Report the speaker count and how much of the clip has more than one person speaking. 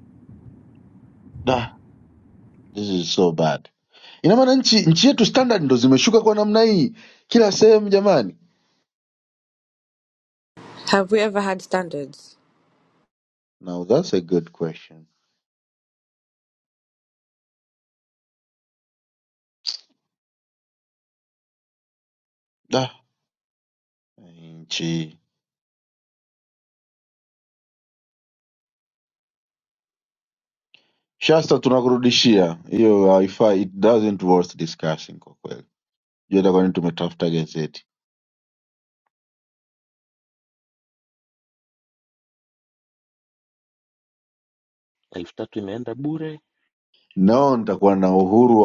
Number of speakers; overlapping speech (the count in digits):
3, no overlap